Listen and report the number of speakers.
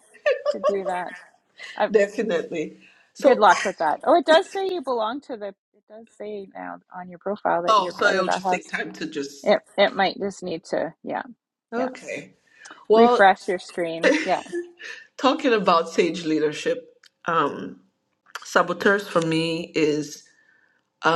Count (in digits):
2